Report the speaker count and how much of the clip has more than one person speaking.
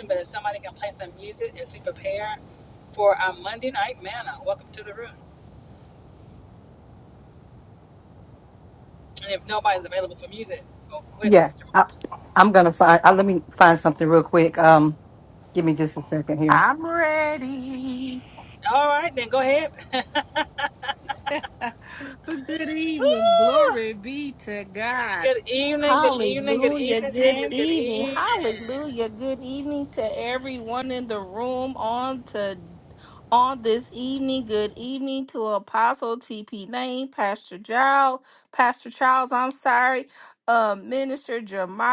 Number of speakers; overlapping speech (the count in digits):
3, about 11%